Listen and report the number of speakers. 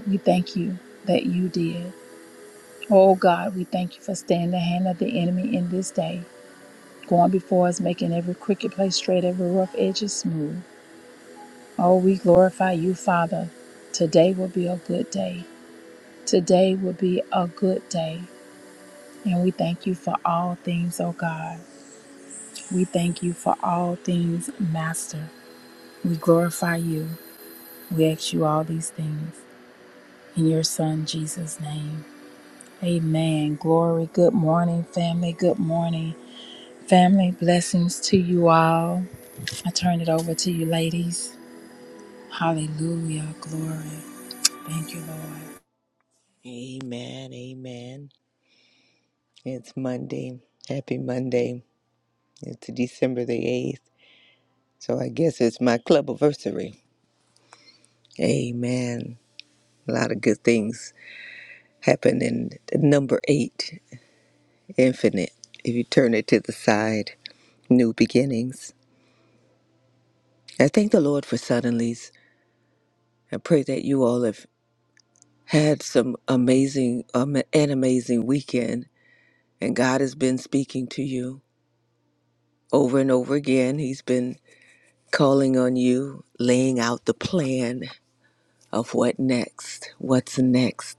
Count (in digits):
2